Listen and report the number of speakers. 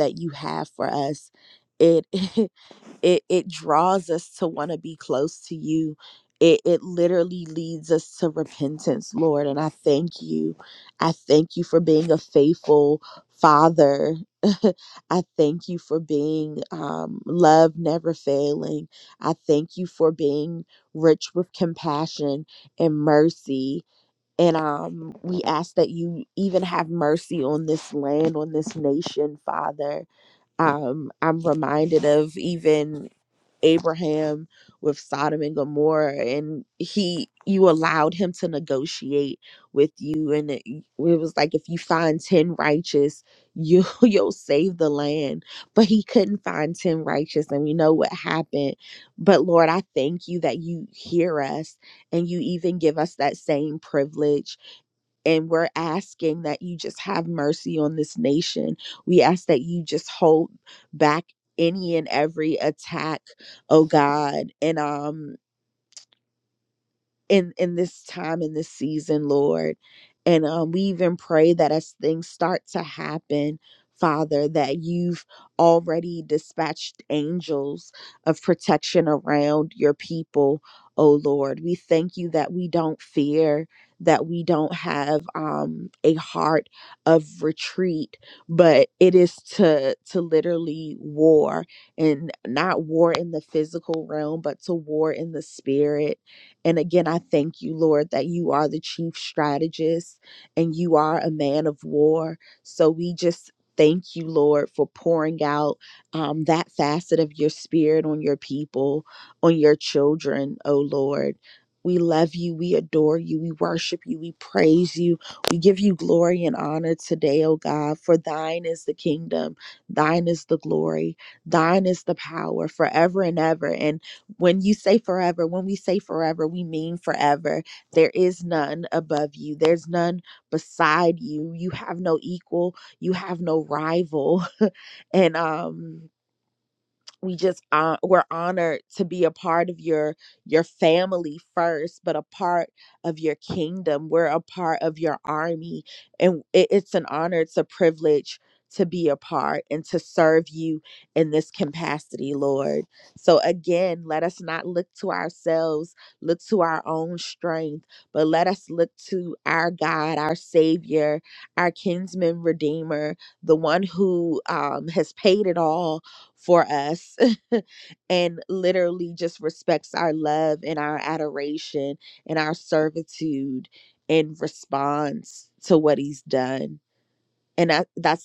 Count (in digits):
1